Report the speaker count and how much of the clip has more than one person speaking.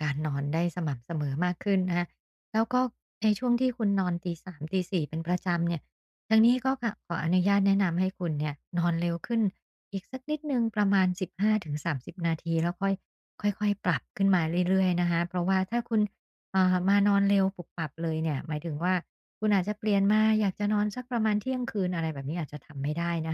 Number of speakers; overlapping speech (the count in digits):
1, no overlap